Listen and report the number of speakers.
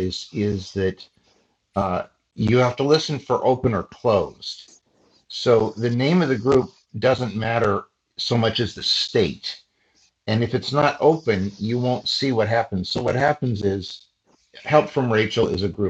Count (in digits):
1